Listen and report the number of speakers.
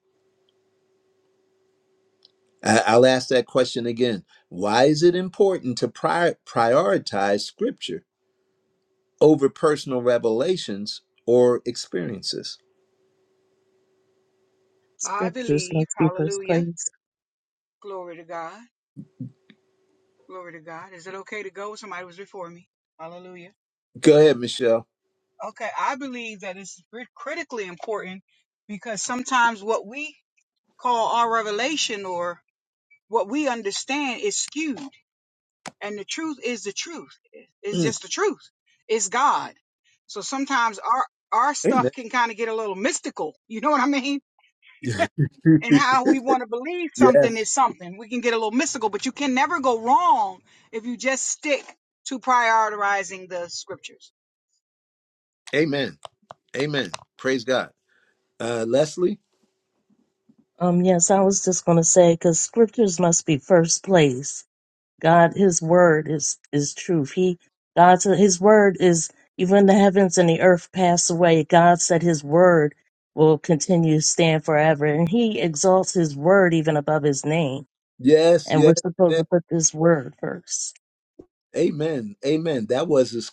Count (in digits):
3